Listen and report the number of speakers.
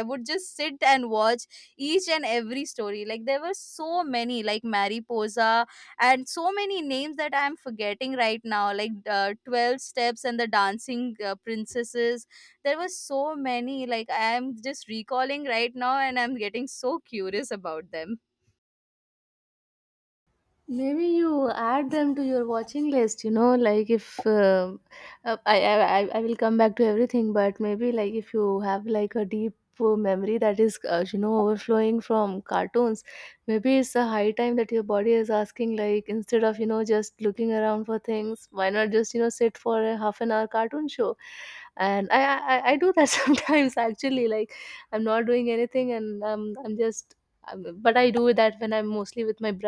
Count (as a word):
two